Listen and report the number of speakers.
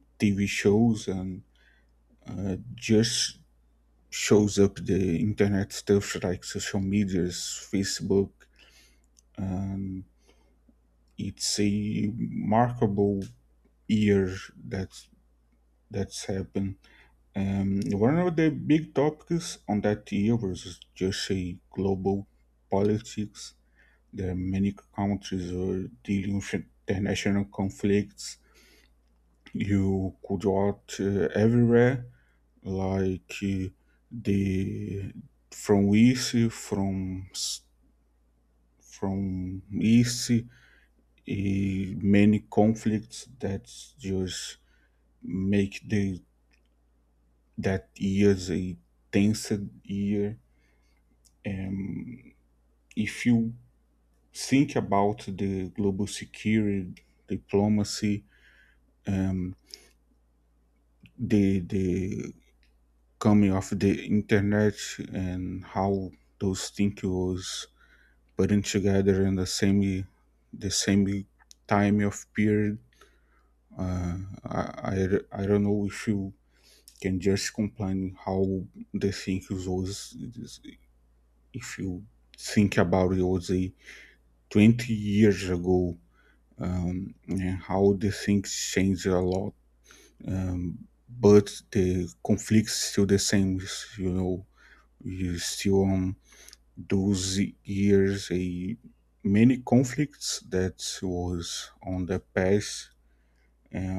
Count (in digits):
1